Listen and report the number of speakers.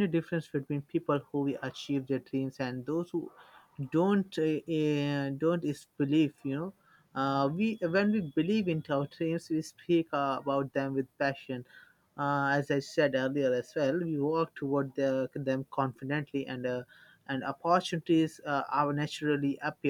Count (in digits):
1